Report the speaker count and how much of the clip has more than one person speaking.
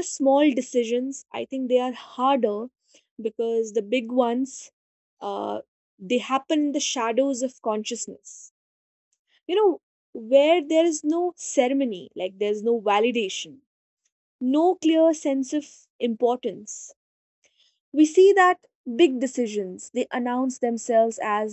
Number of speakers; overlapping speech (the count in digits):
1, no overlap